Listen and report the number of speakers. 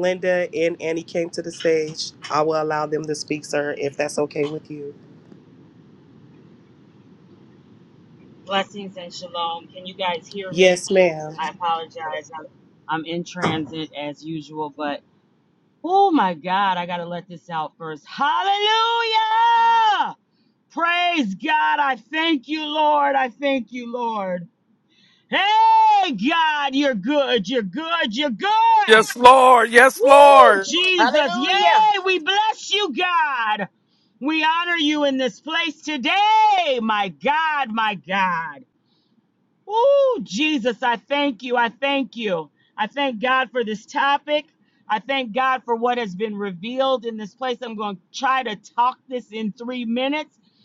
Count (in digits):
3